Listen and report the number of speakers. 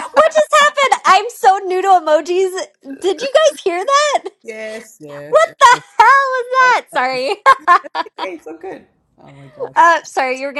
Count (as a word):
two